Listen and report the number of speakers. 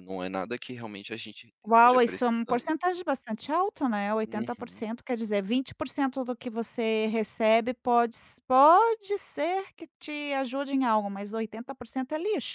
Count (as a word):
two